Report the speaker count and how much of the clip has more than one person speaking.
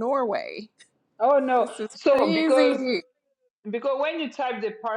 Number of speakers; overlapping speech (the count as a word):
two, about 25%